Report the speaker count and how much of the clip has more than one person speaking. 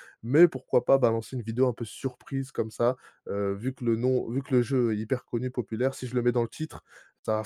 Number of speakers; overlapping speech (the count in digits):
1, no overlap